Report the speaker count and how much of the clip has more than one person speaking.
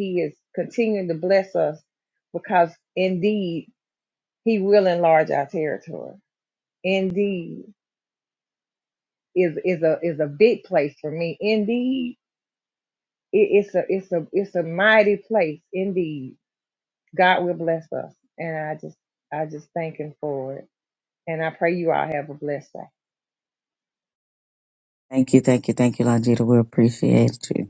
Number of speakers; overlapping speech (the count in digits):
2, no overlap